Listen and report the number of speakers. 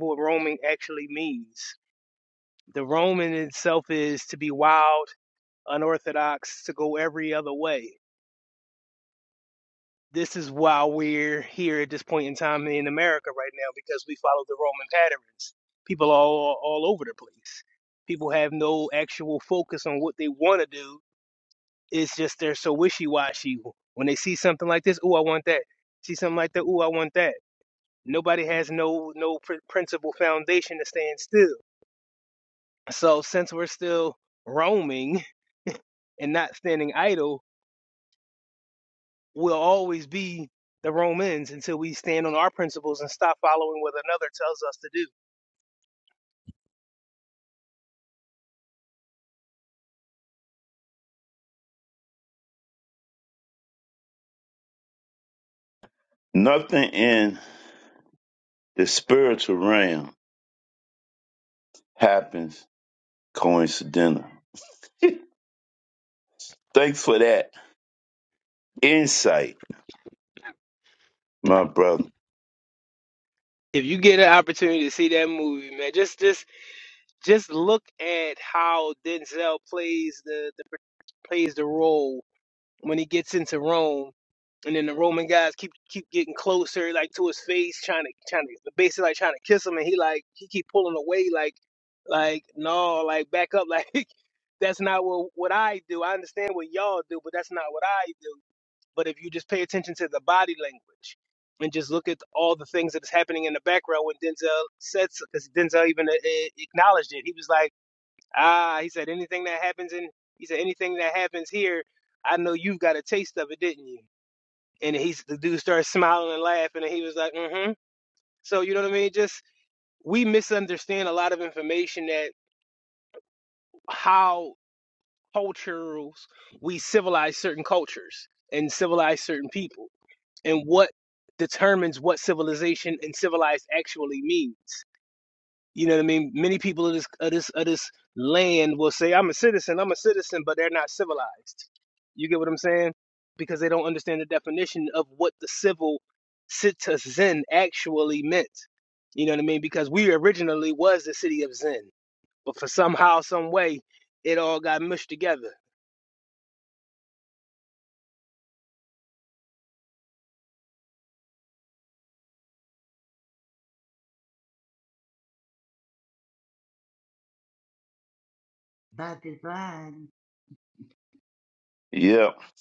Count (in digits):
3